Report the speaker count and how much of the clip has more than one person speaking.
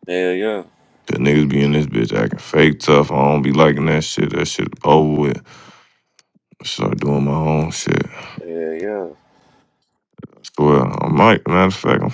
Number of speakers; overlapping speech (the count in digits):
2, no overlap